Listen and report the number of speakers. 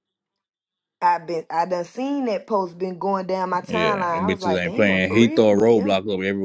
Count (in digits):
2